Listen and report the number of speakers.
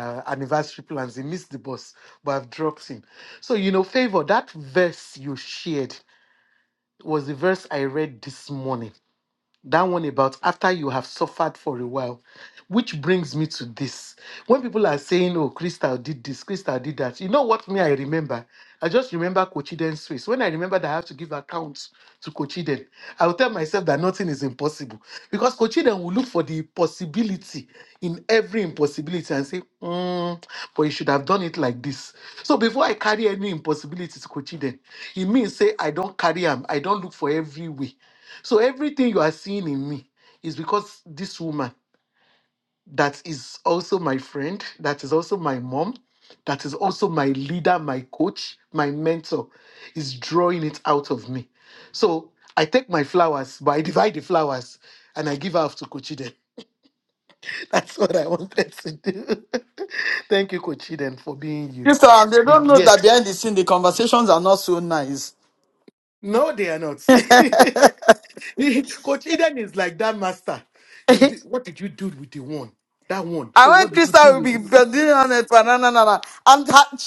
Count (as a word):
two